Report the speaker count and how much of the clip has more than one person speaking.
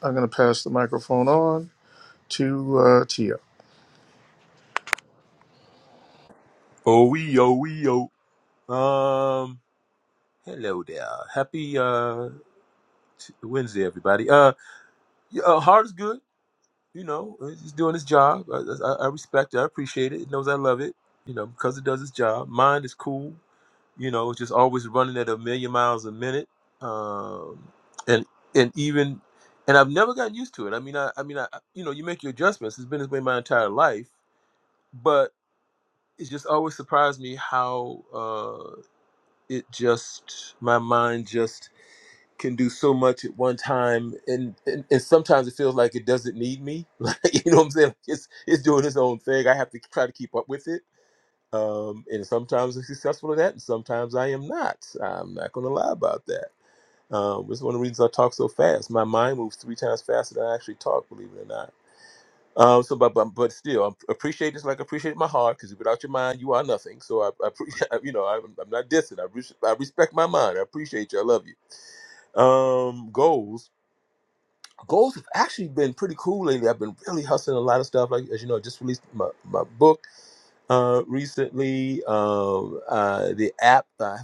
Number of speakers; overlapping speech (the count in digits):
2, no overlap